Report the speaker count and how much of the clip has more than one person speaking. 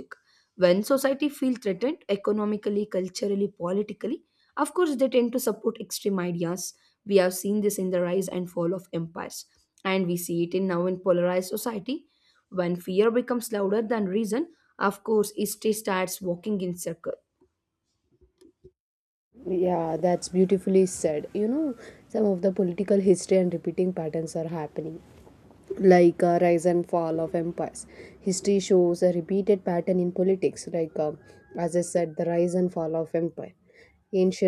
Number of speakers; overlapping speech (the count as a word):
two, no overlap